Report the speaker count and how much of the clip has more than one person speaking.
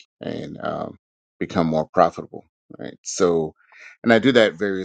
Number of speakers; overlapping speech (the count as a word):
one, no overlap